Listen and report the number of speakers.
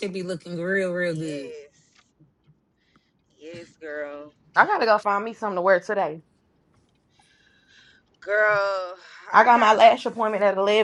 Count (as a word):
three